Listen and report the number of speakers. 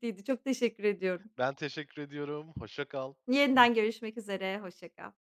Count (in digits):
2